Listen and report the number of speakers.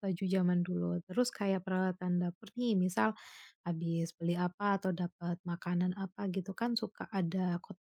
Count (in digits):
1